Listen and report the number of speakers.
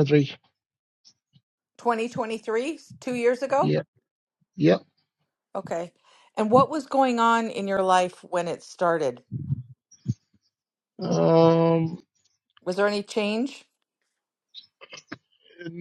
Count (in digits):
2